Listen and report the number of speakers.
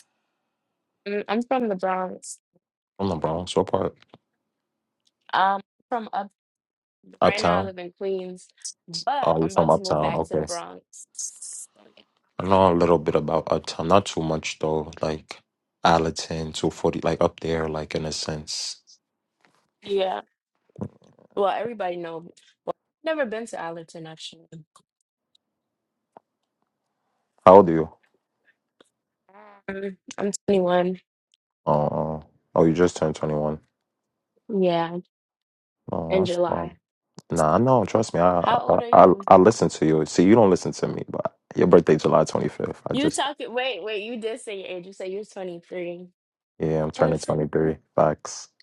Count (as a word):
two